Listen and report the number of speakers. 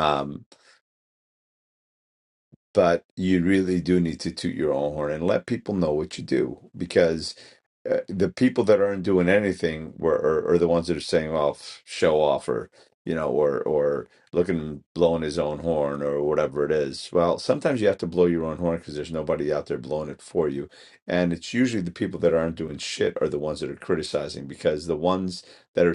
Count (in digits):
1